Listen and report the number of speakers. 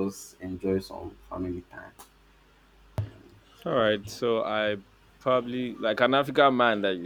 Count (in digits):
2